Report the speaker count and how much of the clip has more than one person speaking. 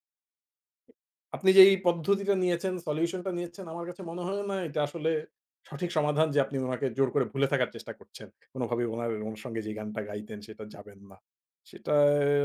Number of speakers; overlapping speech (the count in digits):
1, no overlap